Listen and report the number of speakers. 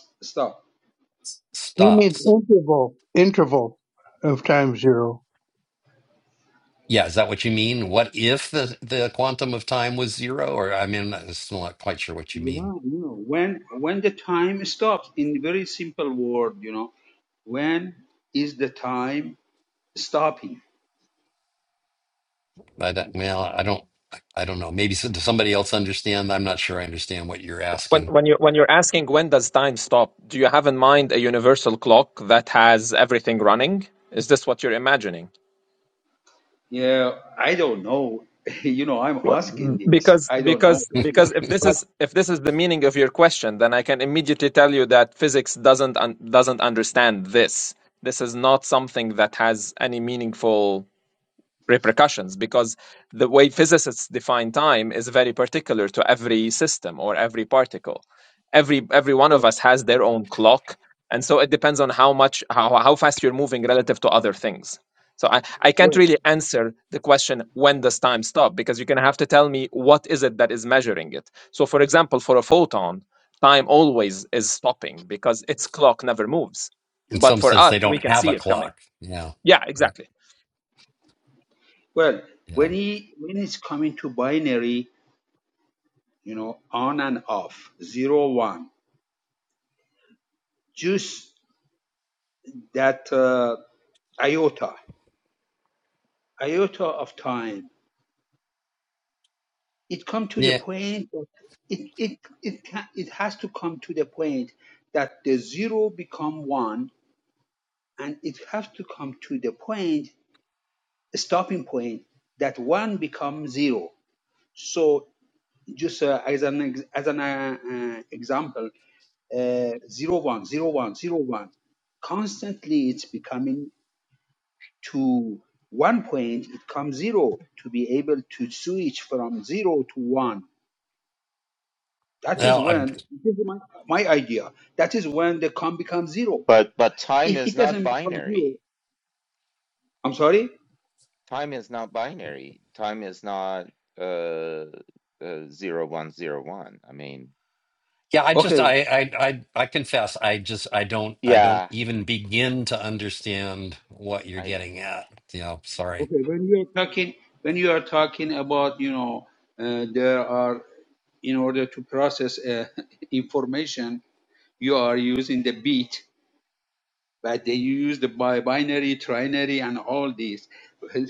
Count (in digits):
5